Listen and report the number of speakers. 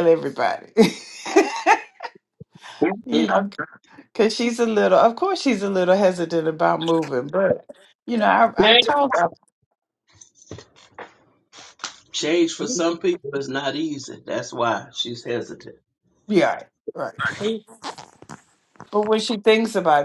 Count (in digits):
2